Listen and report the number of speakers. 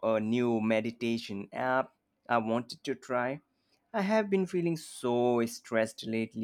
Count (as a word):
one